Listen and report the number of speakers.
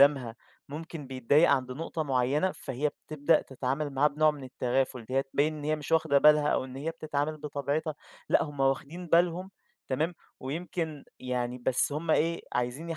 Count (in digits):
1